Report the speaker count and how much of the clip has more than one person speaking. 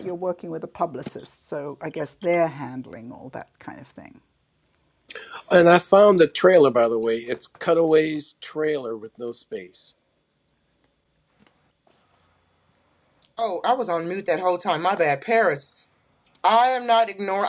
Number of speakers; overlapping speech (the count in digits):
3, no overlap